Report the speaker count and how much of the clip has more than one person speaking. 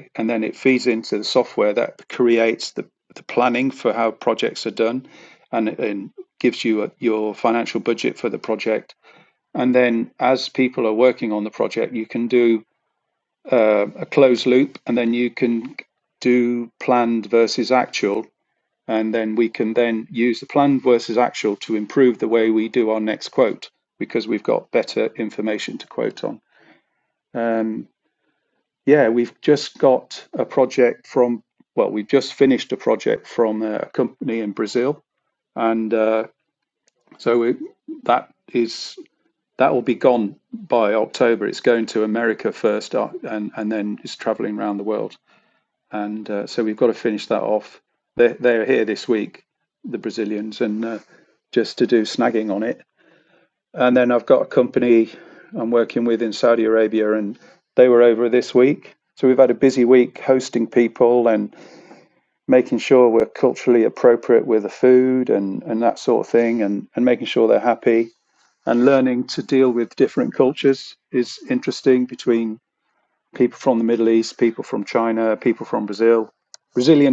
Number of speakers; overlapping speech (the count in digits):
1, no overlap